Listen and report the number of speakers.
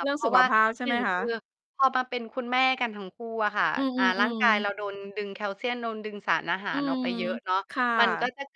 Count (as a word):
two